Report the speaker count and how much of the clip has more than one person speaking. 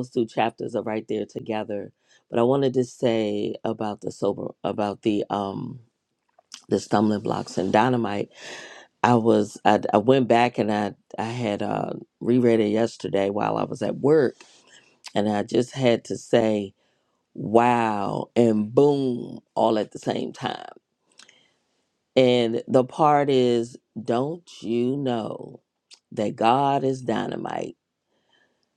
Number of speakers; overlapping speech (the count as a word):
one, no overlap